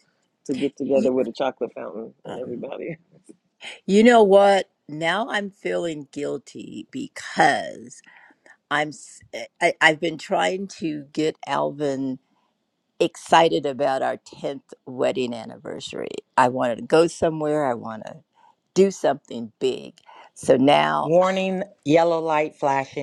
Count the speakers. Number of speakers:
three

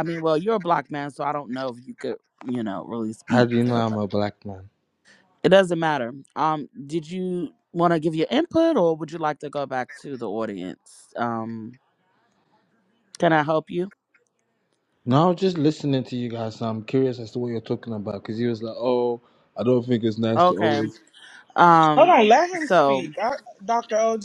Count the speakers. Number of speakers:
three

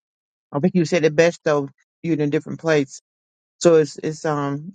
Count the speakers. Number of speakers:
one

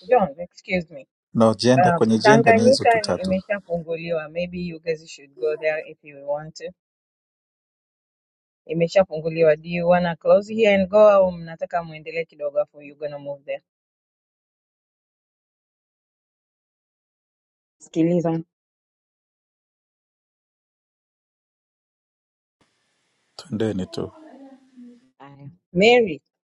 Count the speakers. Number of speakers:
two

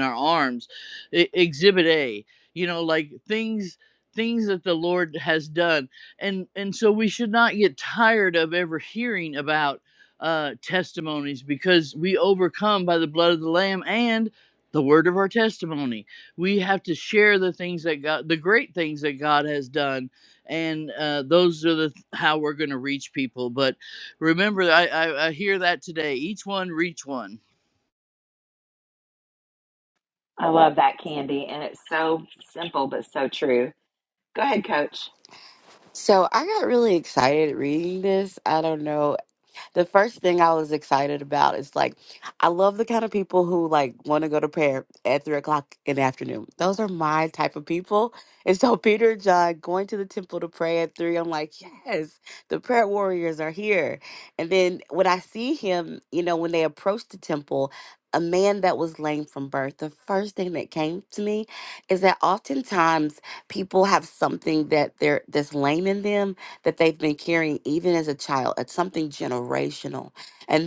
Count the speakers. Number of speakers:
three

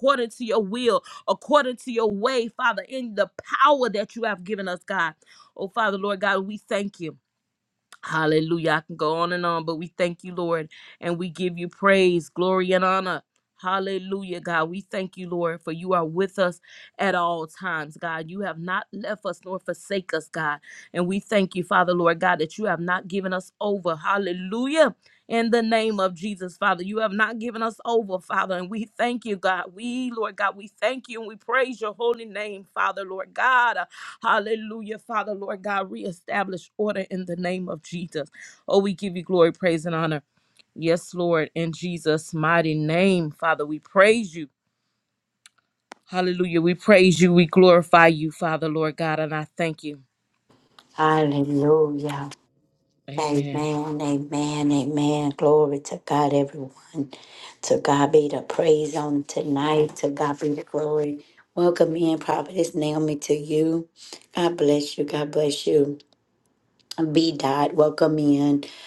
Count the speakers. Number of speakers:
two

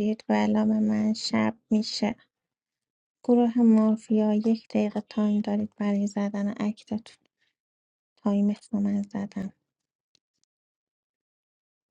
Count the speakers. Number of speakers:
one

